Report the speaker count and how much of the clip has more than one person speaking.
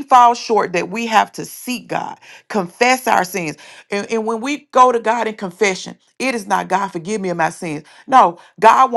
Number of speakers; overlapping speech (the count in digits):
1, no overlap